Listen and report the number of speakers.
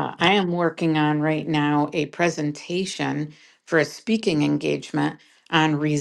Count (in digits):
1